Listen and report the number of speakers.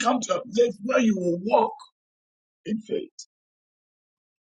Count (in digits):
1